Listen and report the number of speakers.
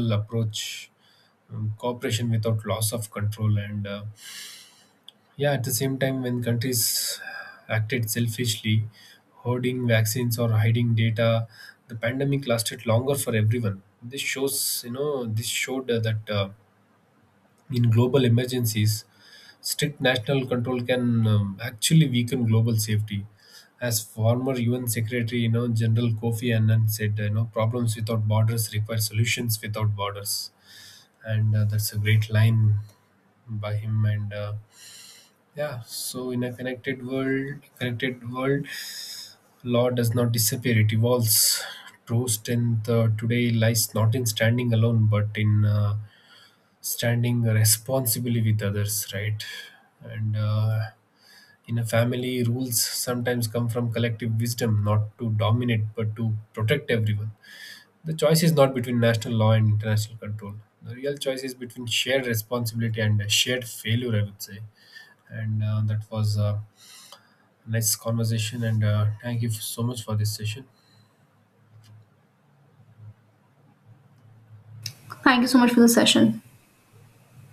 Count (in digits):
2